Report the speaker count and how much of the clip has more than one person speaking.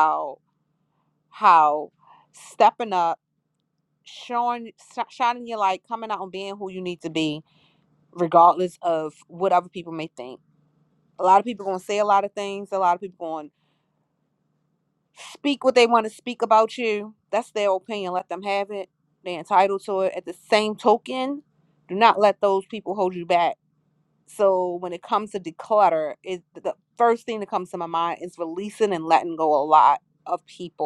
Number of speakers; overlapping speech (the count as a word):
one, no overlap